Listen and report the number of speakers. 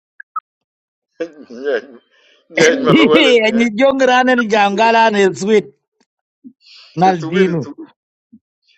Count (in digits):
2